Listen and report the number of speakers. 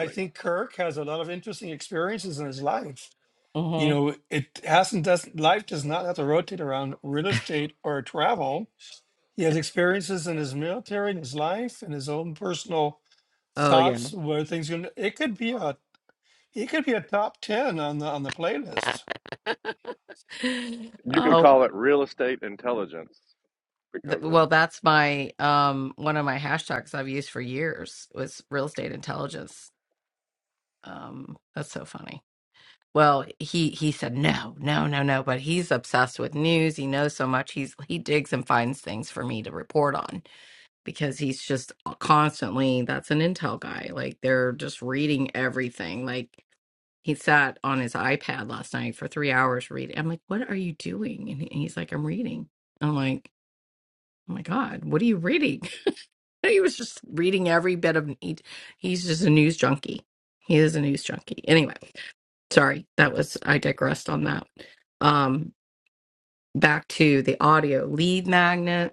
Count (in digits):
3